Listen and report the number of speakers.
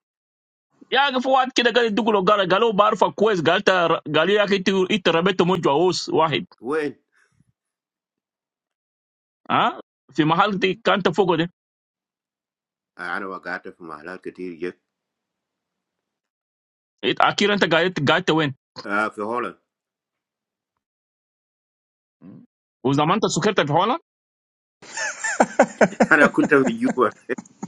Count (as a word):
two